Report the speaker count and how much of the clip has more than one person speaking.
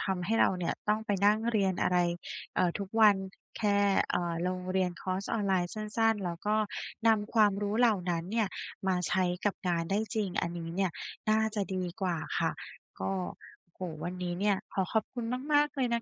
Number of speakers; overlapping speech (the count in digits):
1, no overlap